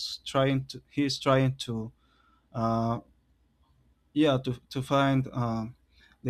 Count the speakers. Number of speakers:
one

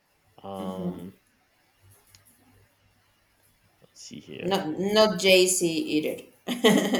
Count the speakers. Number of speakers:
two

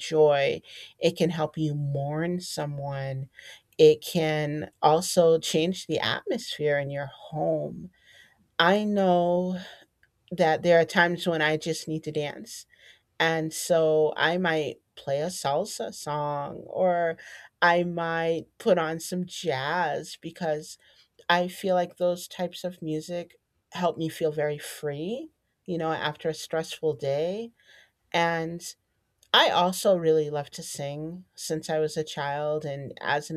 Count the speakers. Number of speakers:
one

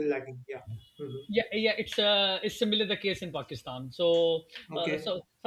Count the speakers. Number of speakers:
two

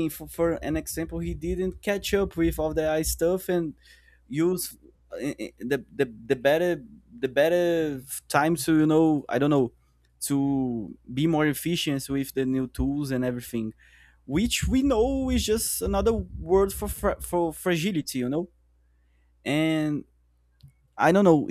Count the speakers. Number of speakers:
one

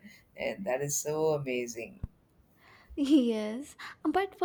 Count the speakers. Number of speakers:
two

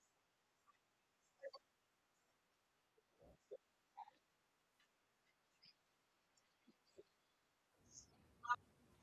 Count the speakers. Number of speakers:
zero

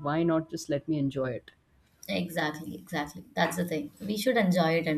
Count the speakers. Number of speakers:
two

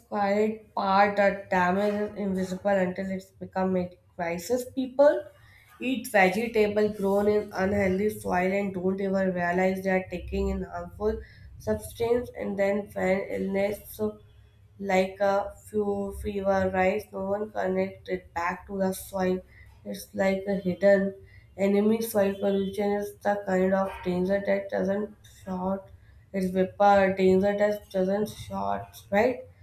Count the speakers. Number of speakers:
one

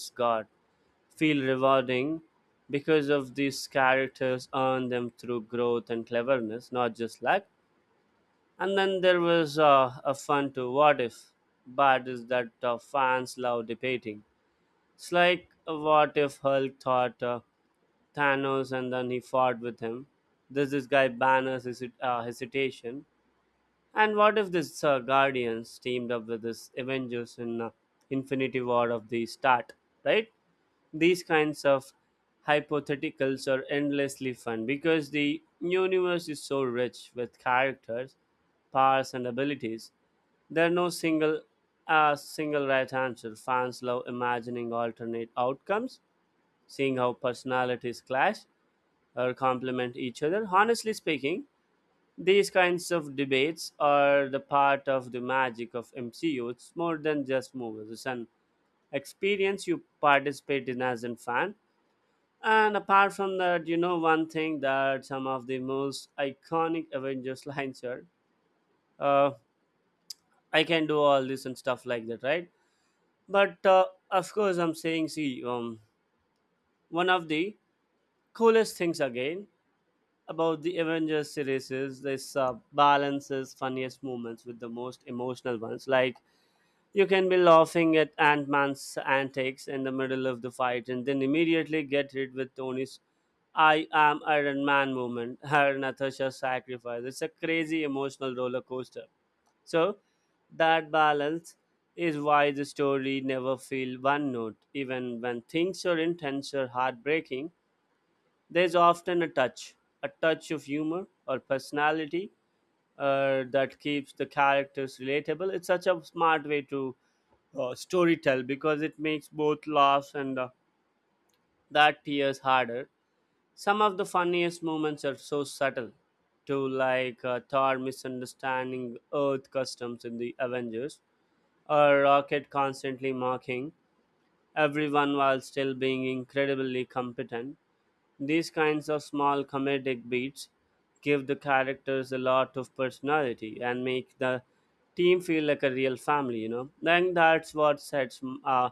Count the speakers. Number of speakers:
one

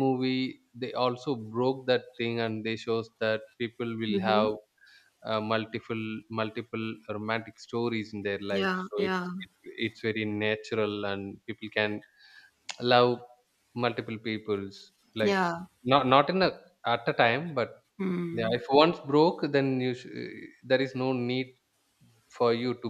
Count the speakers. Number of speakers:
two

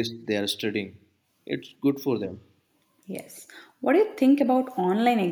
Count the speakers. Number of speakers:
two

